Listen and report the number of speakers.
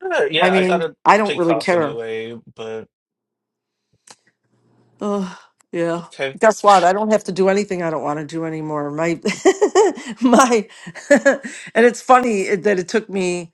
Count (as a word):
two